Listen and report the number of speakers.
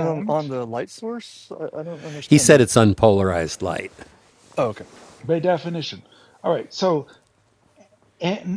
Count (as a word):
three